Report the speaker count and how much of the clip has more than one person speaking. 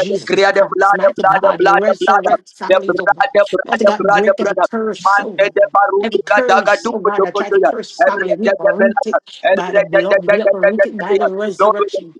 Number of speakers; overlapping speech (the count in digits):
2, about 81%